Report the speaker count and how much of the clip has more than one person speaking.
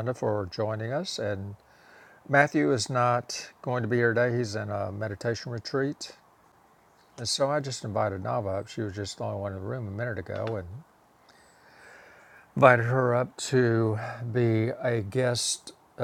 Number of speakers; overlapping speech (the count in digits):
1, no overlap